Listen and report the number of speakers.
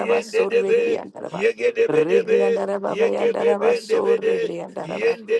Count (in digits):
2